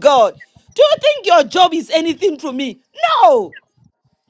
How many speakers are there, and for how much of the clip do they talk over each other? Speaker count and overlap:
one, no overlap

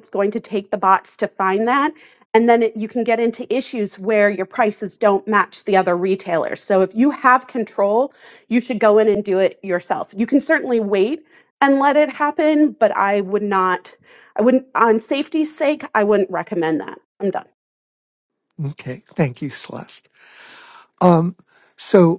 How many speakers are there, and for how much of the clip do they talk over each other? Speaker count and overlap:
two, no overlap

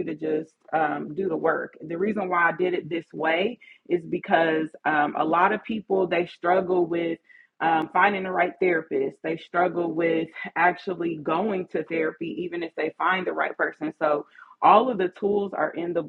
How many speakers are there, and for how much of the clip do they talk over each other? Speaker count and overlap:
one, no overlap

